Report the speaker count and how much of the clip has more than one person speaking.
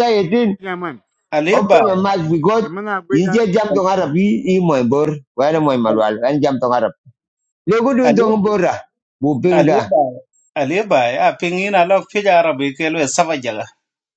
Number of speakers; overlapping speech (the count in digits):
3, about 9%